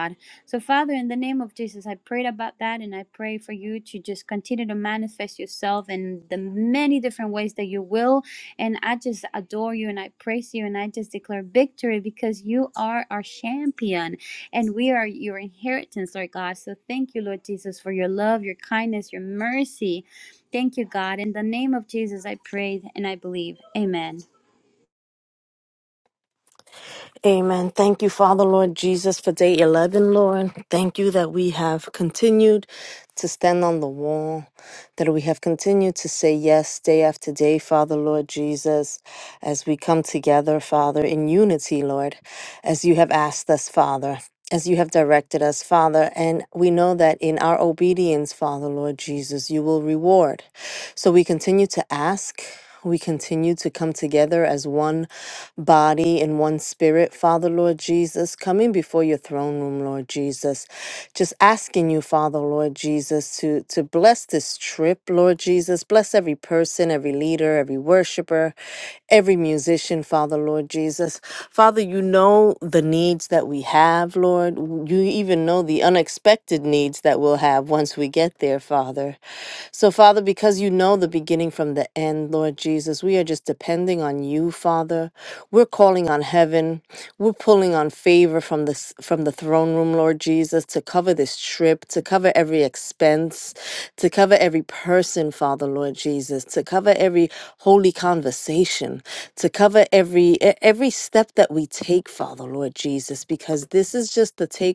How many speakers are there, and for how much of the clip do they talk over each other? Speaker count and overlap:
2, no overlap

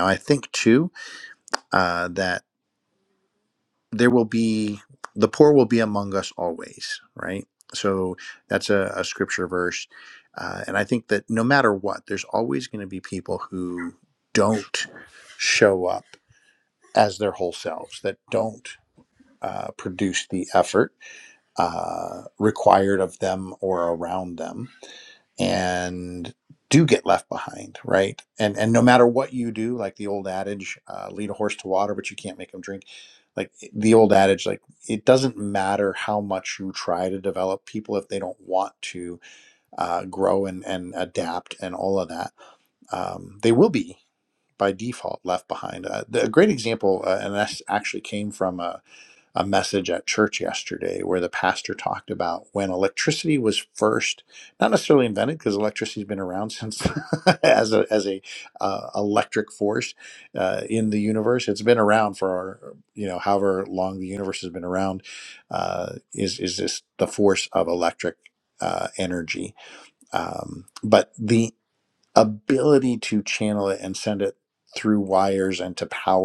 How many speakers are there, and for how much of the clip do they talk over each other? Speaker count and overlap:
1, no overlap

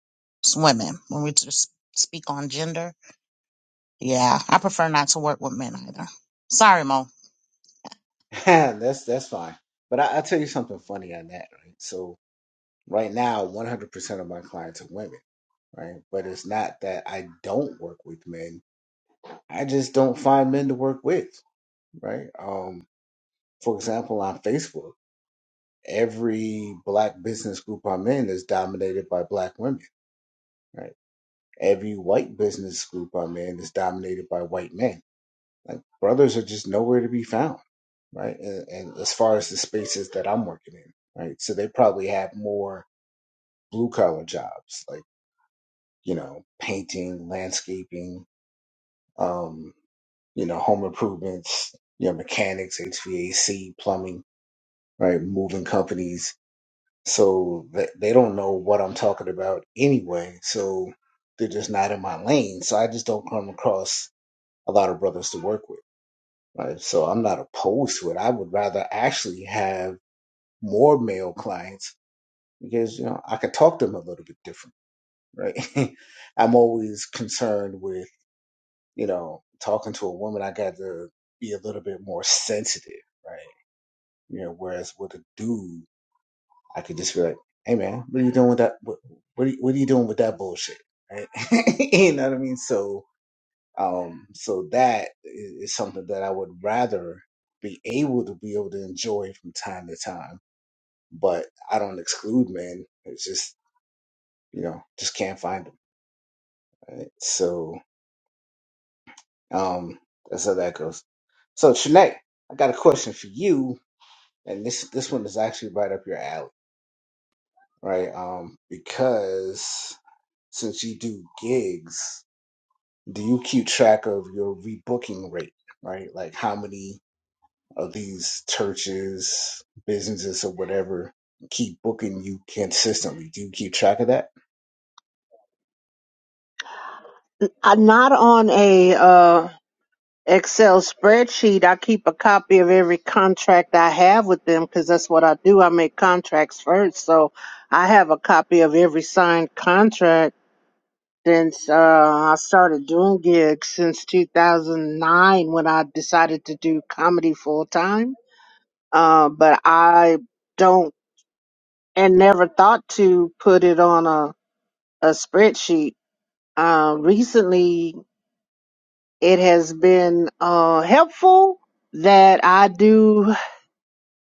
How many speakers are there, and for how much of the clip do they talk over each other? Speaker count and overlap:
3, no overlap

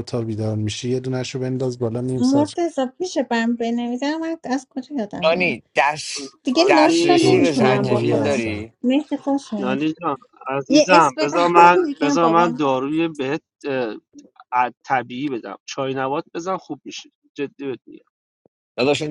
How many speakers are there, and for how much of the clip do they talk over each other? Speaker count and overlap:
4, about 24%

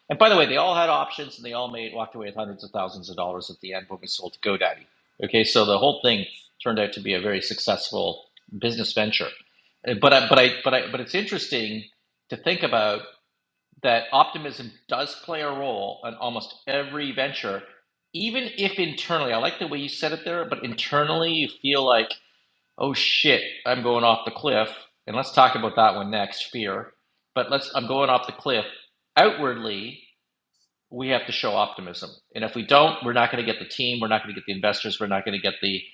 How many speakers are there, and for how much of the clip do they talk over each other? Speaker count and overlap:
1, no overlap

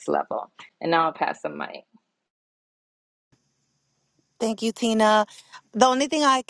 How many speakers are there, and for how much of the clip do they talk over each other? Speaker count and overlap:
2, no overlap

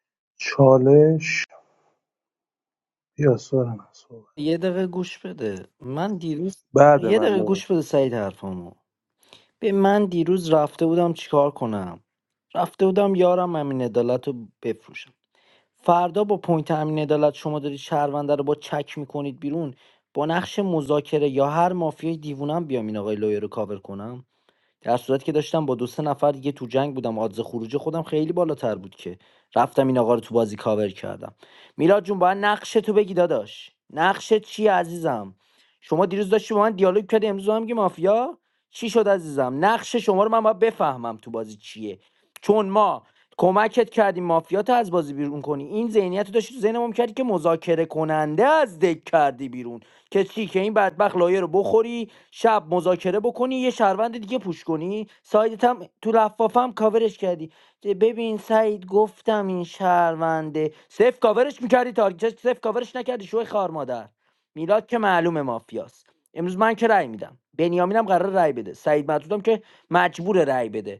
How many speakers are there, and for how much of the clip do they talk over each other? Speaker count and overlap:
2, about 1%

